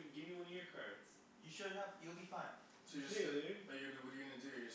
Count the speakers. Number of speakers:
3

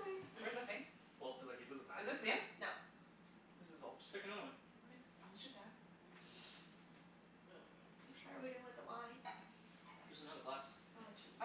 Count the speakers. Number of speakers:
4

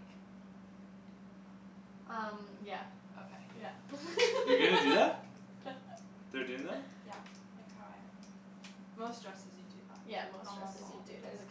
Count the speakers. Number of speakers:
3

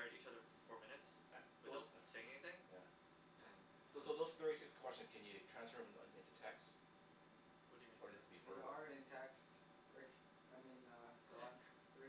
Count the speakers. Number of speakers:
3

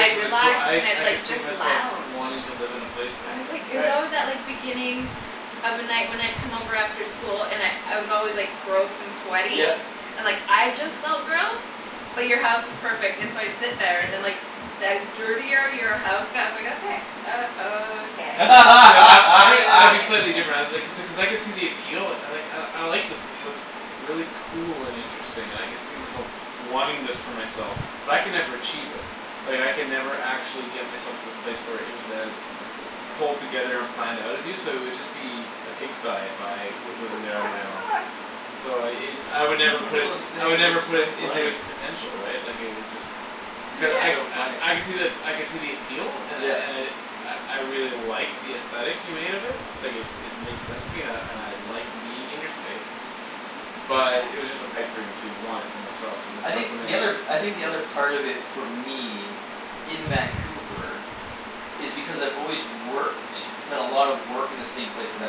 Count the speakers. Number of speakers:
3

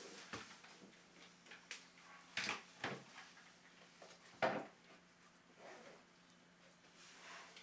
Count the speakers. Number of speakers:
0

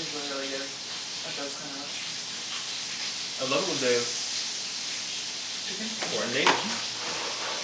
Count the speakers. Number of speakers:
2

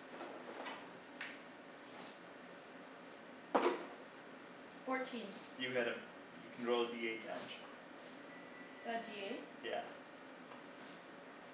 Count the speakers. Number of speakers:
2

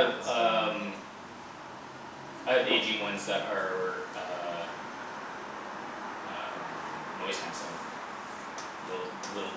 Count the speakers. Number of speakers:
1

